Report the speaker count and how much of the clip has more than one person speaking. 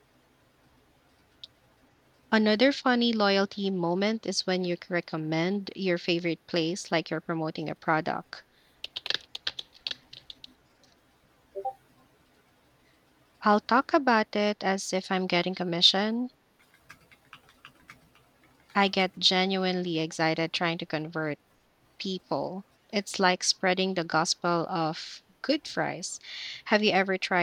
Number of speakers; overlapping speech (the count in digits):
1, no overlap